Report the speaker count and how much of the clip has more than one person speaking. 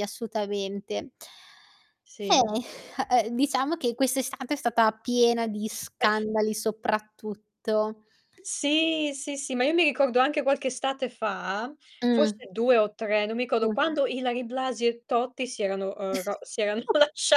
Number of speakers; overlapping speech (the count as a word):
two, about 3%